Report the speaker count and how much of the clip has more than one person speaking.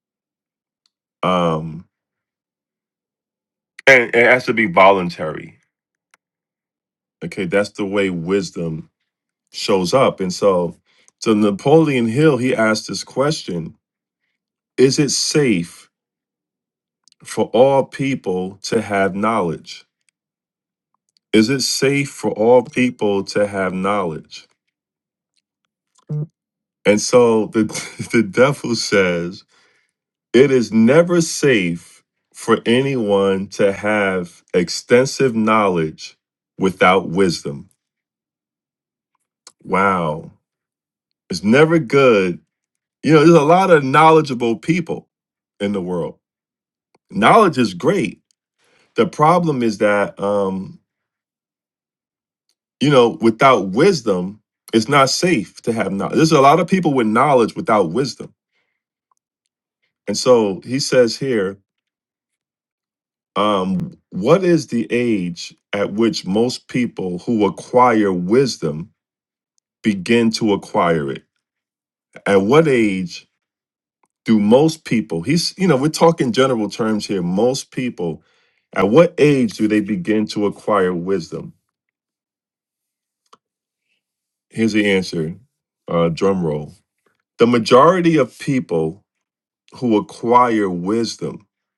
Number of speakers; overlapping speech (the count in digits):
1, no overlap